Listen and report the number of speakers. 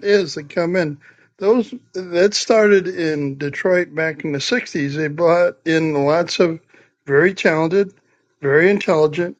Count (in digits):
1